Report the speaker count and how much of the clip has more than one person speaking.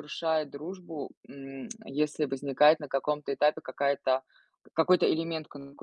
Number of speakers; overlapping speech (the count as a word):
one, no overlap